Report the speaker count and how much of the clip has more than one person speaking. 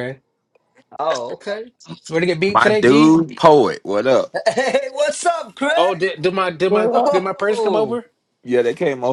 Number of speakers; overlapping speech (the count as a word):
three, about 20%